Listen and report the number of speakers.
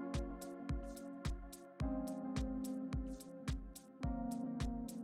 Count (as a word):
zero